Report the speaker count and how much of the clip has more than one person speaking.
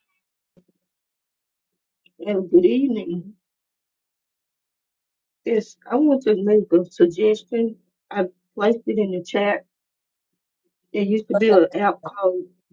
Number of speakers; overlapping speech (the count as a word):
one, no overlap